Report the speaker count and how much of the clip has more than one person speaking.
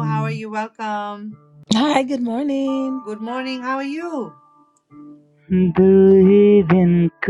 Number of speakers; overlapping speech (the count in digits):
3, no overlap